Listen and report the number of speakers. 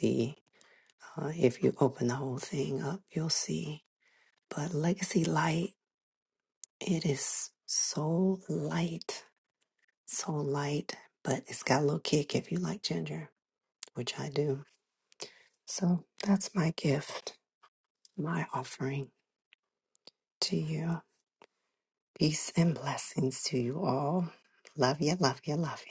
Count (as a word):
one